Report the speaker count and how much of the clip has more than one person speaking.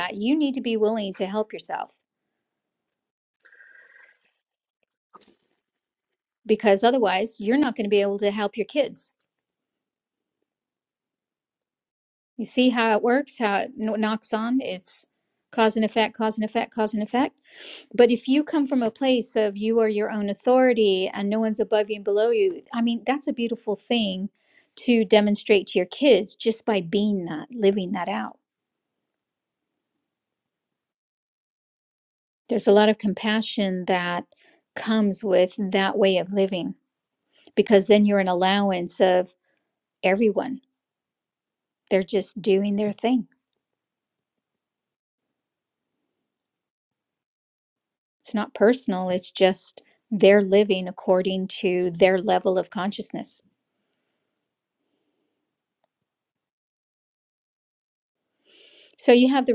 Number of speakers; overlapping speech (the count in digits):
1, no overlap